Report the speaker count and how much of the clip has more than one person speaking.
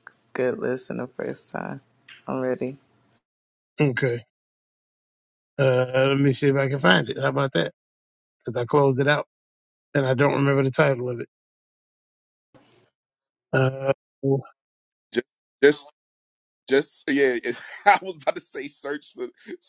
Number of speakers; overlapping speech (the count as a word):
three, no overlap